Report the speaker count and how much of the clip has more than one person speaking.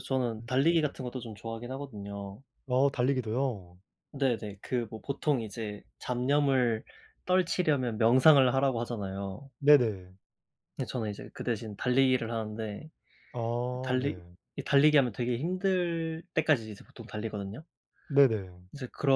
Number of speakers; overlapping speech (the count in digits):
2, about 2%